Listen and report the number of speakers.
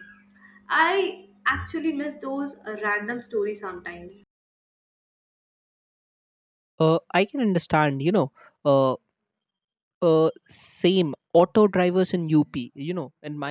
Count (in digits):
2